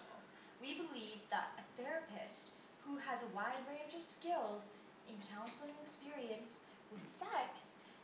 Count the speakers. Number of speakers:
1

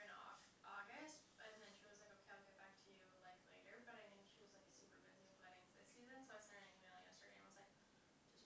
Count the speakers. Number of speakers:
1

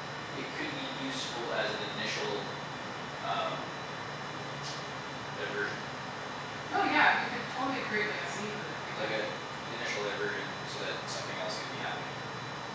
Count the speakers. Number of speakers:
2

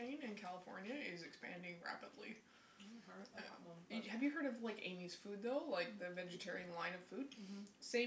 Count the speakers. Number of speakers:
2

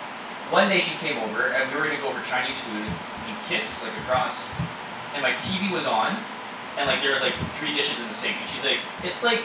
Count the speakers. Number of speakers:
1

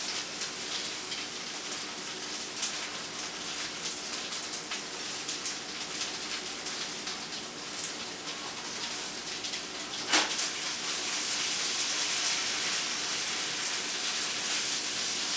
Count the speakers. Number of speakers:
0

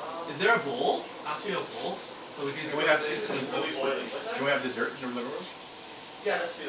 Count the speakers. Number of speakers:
3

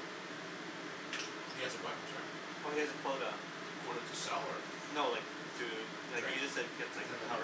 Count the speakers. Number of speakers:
2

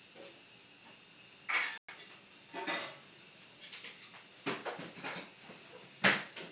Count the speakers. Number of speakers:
0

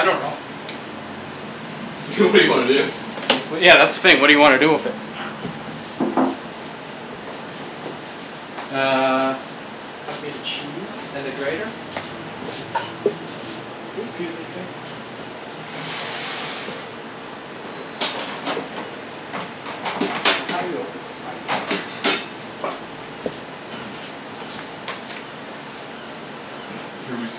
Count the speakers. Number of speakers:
2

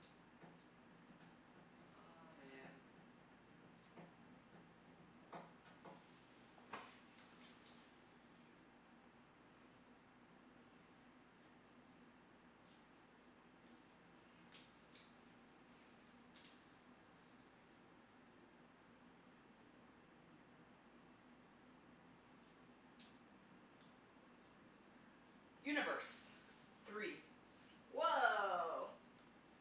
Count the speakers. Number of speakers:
2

